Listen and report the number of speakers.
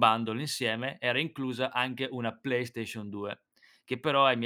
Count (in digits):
1